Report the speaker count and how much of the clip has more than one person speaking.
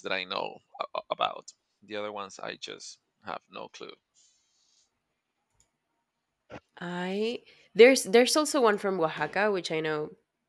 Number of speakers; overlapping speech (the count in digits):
2, no overlap